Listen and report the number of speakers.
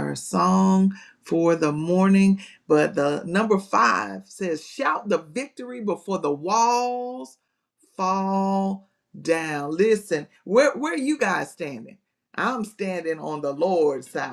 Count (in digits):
1